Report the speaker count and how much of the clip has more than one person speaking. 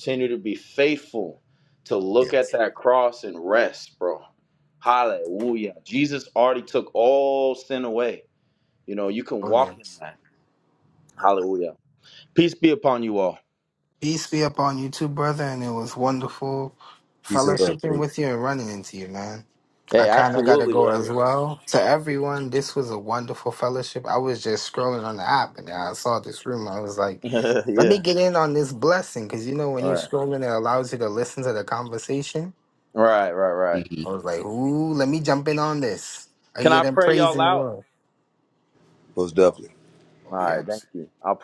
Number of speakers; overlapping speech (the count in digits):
3, about 11%